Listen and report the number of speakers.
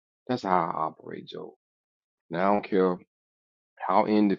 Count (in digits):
1